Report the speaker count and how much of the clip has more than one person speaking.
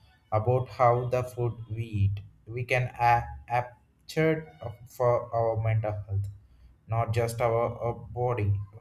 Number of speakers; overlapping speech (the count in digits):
1, no overlap